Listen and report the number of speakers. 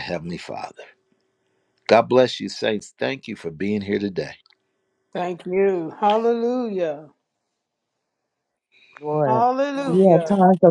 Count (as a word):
three